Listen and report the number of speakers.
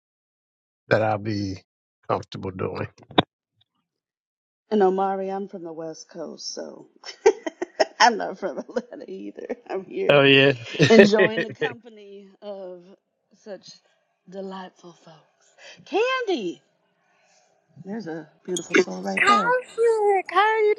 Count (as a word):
three